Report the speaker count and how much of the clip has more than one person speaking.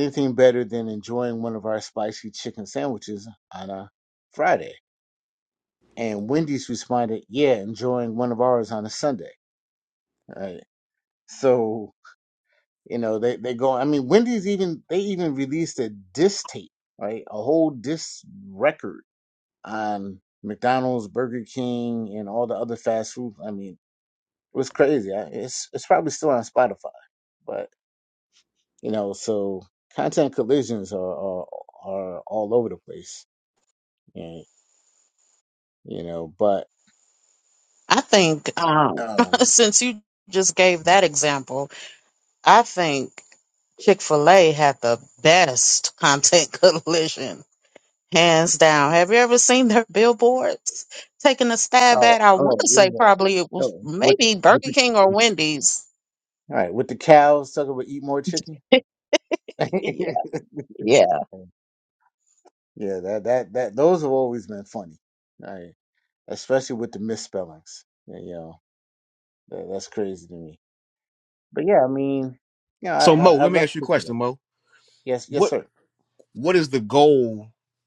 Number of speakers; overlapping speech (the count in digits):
3, about 4%